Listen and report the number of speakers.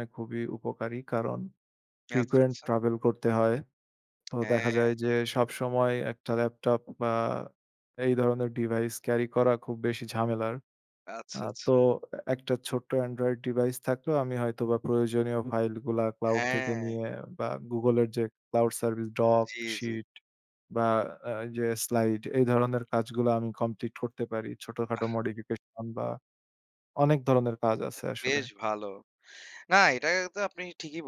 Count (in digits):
2